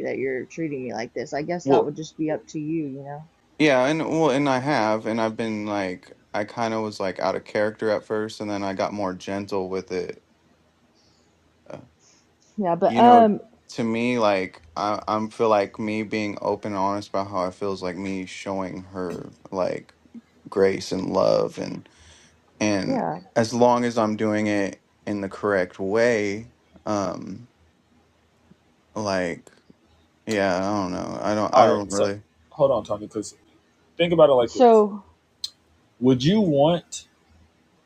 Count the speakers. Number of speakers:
3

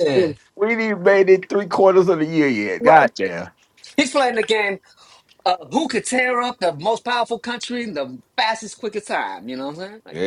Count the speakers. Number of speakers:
2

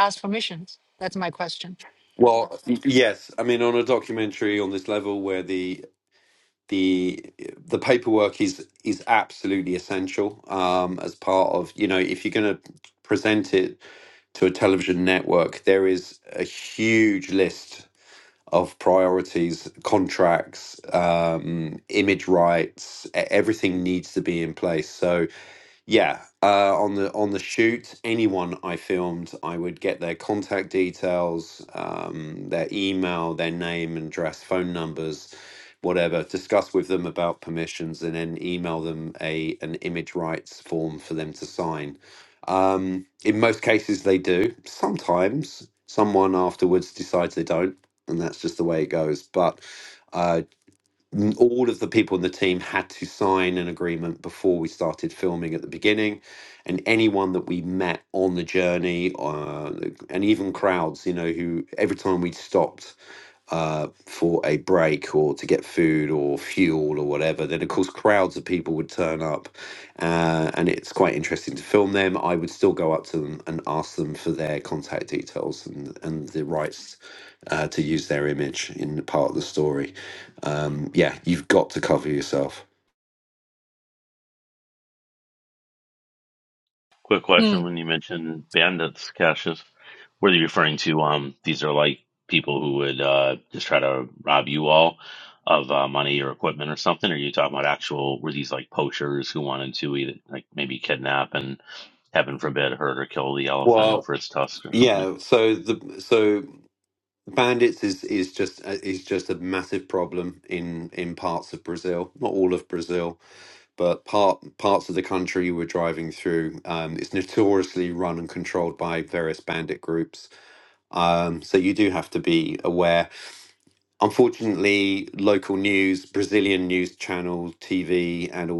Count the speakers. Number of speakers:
3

